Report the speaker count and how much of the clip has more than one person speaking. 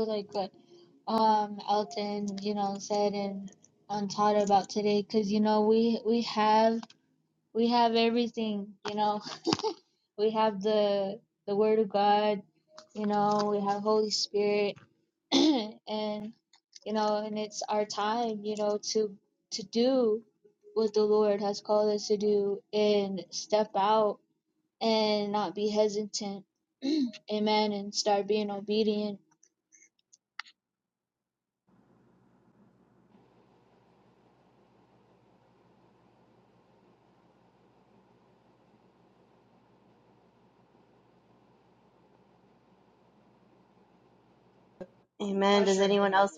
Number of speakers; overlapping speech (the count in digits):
2, no overlap